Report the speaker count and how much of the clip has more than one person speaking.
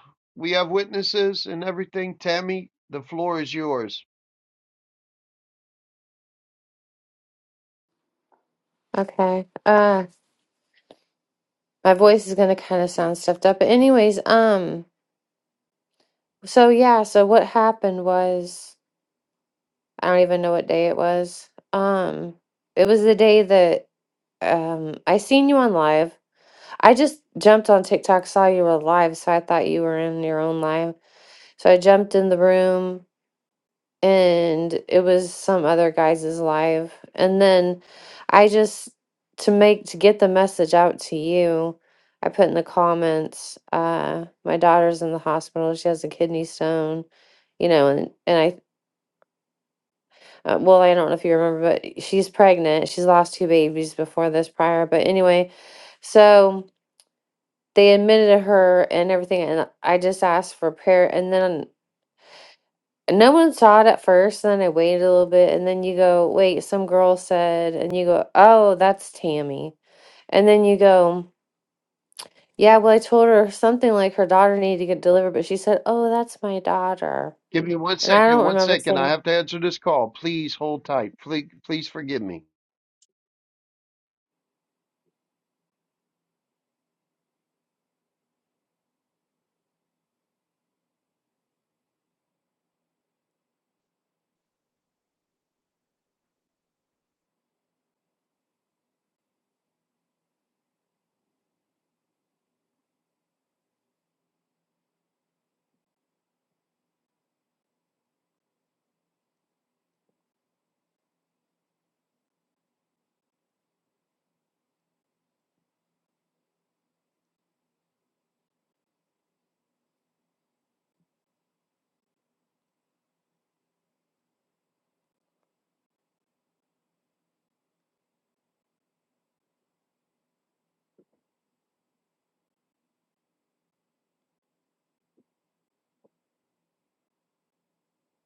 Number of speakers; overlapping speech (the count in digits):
2, about 1%